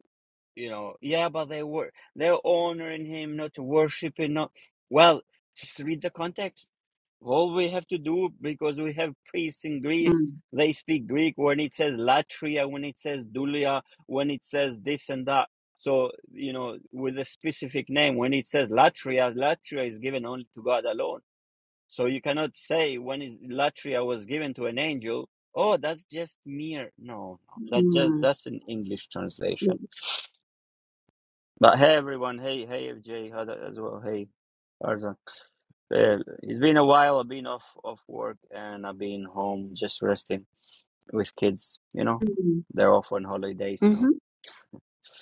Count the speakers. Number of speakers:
2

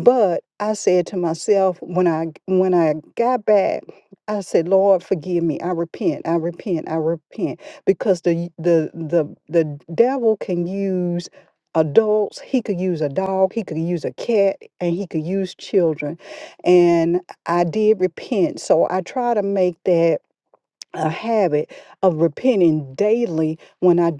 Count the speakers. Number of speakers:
1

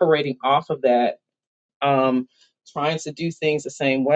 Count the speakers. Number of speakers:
1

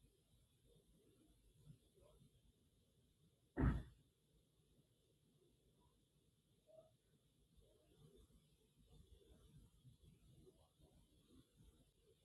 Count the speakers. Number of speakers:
0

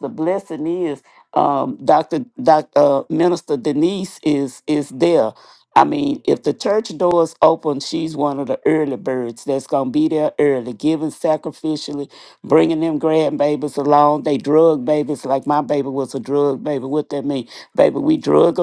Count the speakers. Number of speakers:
1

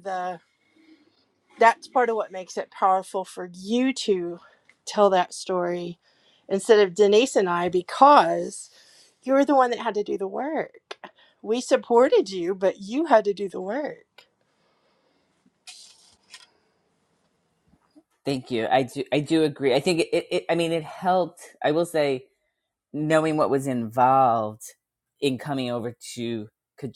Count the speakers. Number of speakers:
2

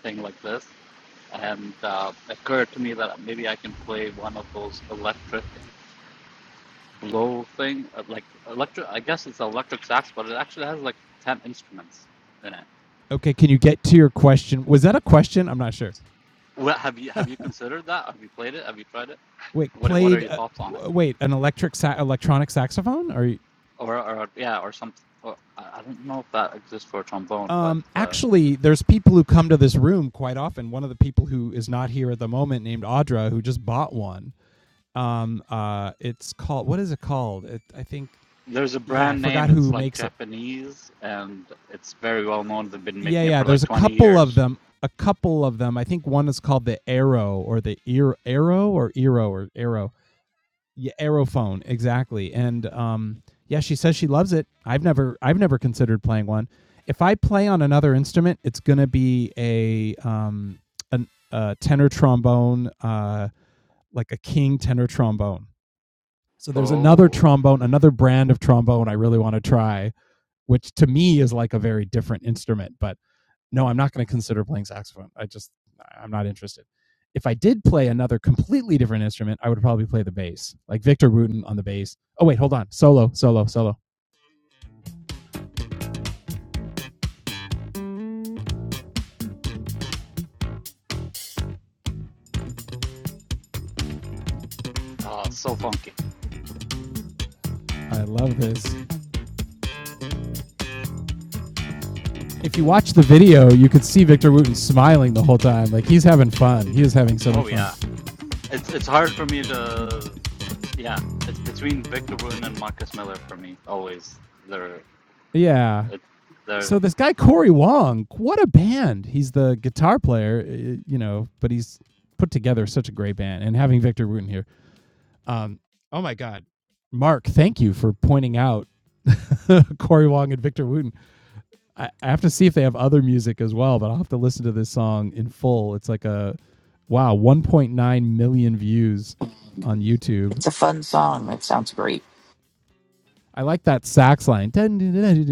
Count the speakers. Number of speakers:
3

